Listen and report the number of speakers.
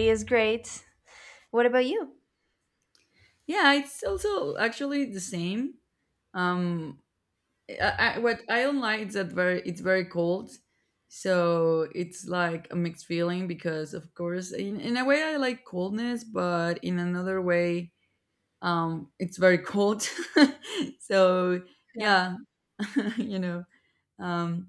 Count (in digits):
2